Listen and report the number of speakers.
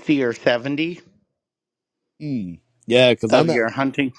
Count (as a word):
two